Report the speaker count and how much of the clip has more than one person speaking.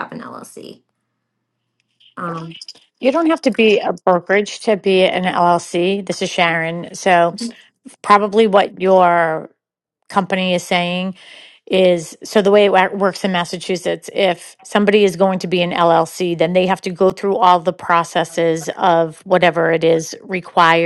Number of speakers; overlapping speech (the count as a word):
two, no overlap